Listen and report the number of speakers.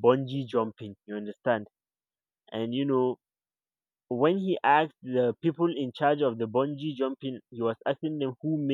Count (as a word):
one